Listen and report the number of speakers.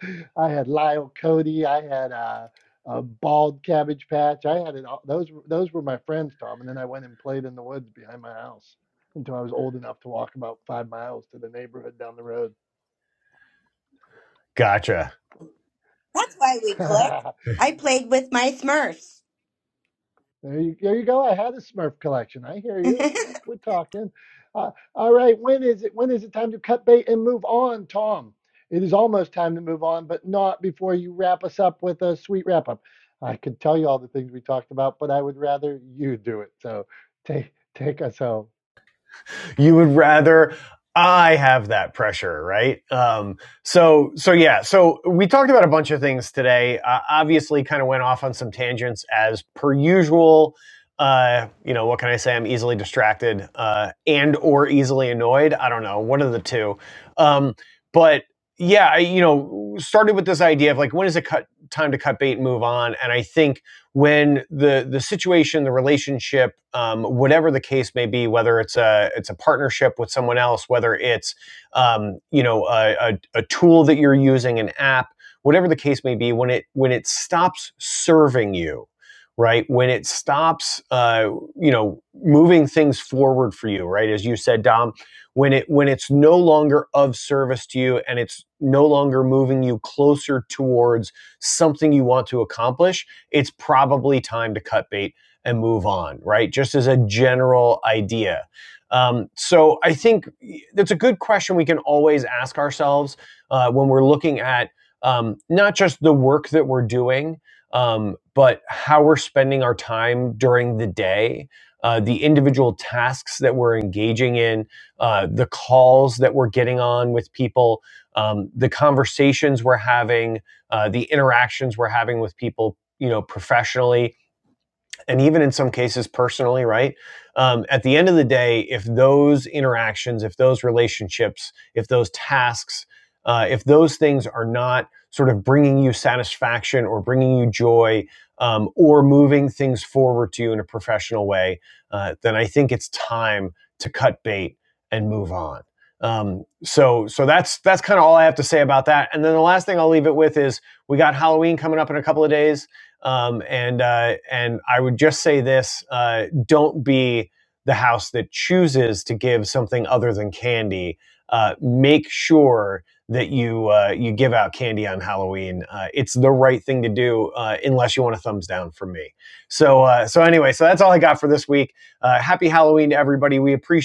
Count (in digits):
3